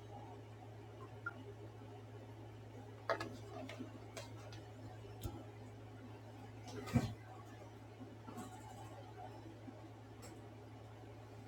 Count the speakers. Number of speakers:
zero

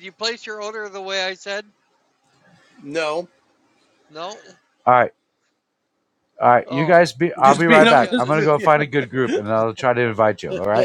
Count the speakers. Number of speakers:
three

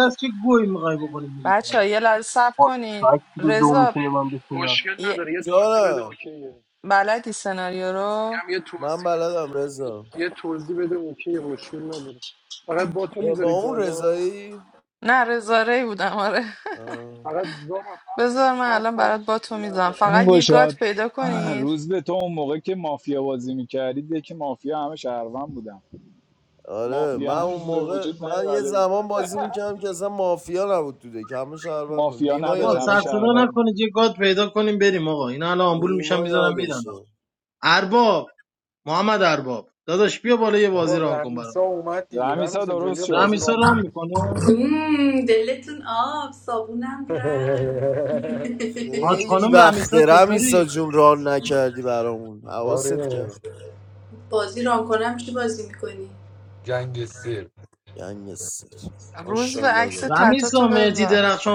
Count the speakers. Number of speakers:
eight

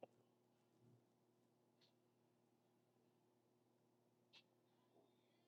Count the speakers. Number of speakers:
zero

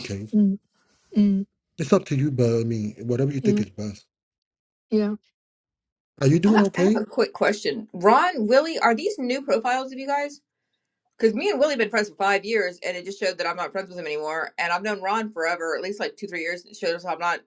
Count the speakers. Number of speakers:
three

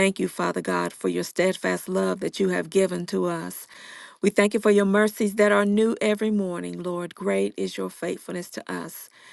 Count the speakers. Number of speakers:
one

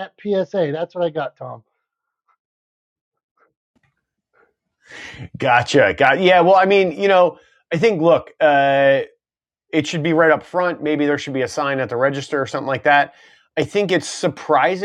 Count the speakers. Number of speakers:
two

